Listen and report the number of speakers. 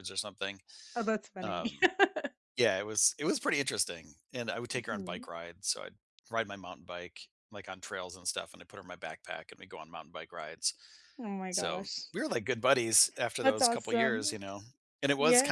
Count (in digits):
2